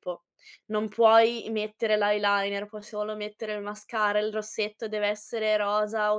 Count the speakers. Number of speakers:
1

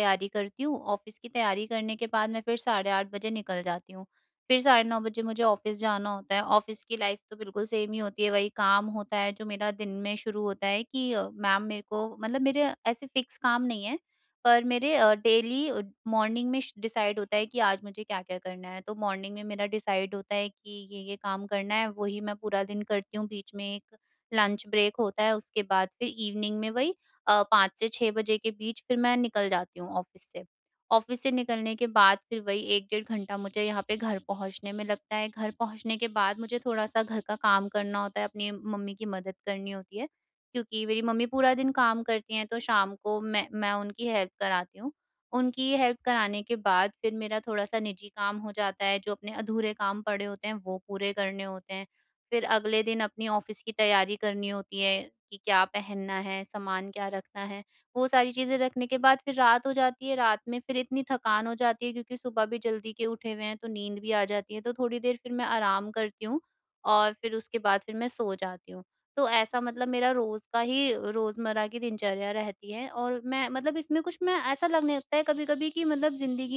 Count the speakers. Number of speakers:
1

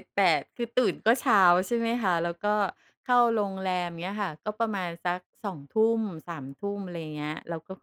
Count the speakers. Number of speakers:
1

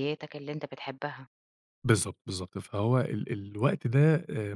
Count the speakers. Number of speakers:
2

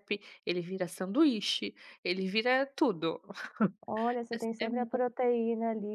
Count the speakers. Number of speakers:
2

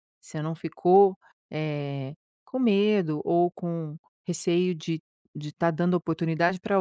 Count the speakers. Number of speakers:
1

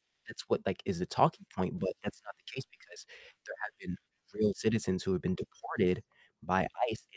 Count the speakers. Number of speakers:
1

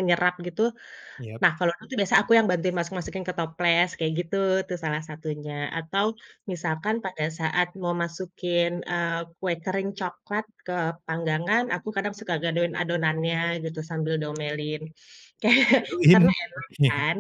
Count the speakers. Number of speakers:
2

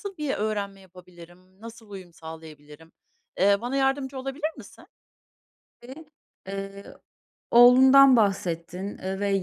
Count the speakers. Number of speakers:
2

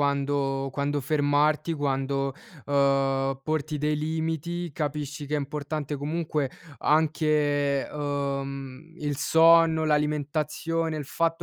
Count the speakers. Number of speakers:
1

